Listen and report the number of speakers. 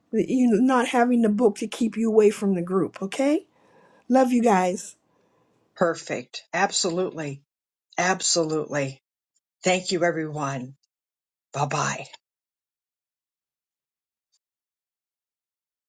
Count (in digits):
2